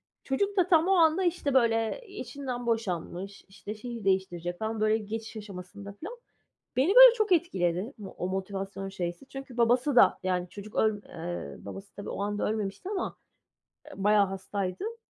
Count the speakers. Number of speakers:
one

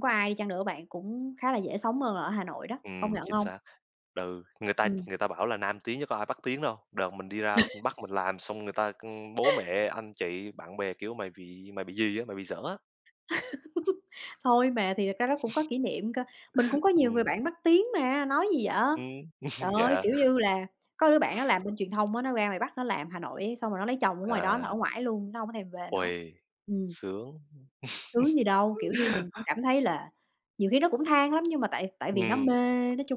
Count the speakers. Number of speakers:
two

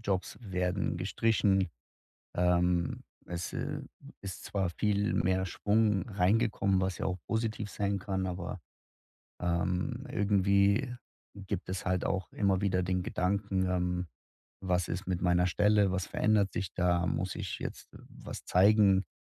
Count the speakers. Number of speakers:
one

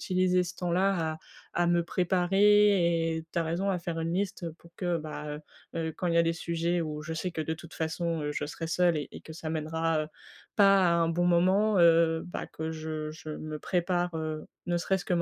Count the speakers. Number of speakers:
one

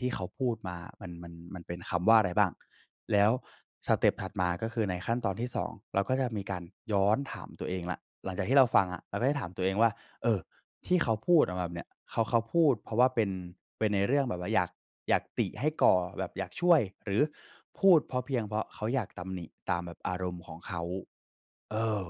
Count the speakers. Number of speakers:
one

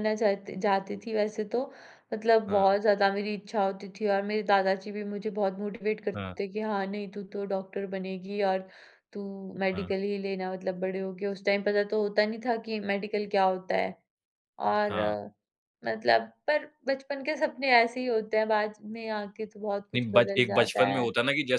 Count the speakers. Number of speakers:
two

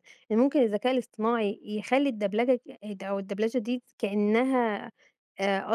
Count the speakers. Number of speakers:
one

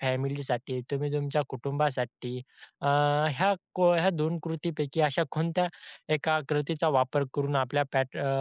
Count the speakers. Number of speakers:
one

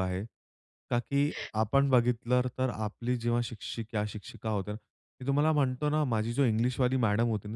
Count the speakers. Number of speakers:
one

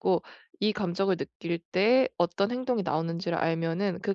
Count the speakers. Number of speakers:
one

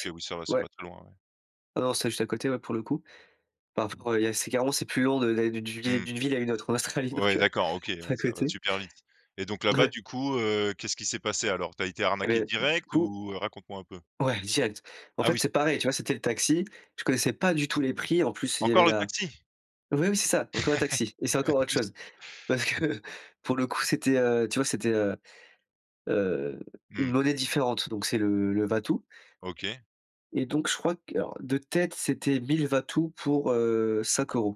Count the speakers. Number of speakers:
two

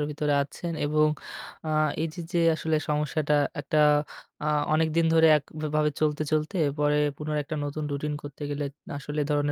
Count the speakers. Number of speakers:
one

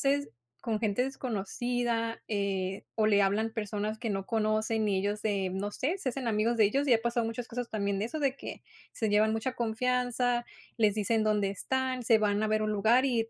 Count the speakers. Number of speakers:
one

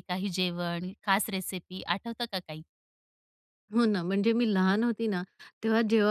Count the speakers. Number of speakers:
two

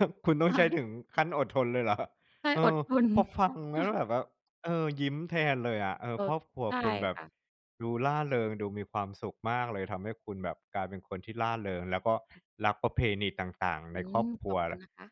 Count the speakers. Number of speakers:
two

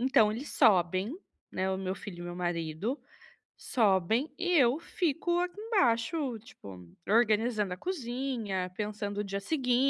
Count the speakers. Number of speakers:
one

